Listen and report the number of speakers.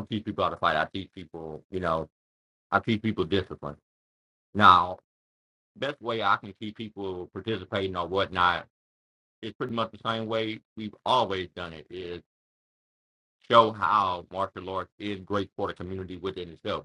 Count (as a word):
one